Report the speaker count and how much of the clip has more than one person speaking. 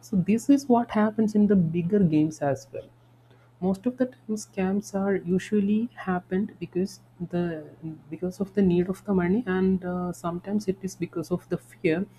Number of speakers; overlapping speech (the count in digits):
1, no overlap